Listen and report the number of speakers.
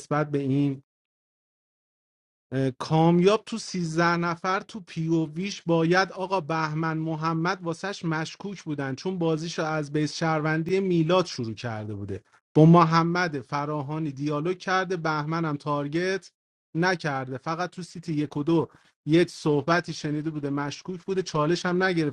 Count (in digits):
1